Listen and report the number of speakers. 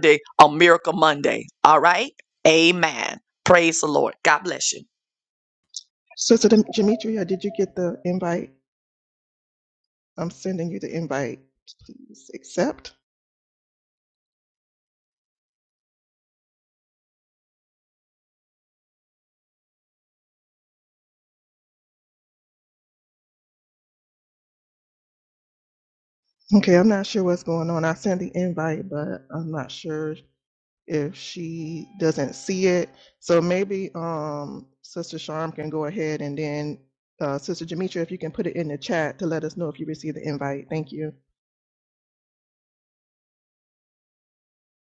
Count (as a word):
two